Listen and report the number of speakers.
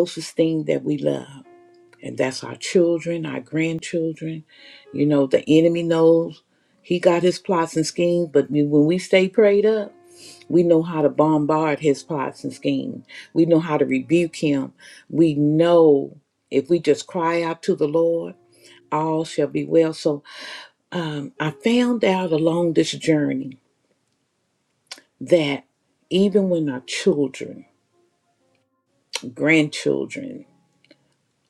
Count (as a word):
one